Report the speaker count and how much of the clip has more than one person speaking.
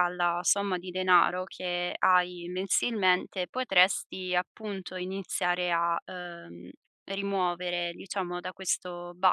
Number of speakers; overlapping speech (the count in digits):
1, no overlap